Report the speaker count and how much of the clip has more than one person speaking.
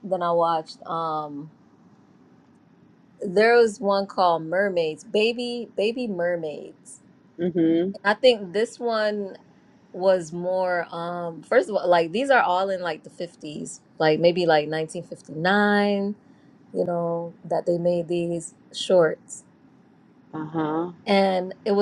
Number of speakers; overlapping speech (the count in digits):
2, no overlap